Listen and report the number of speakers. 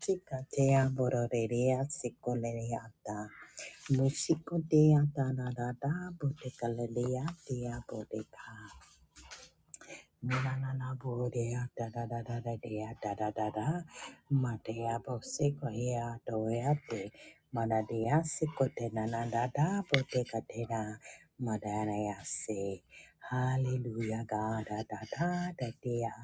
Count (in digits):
1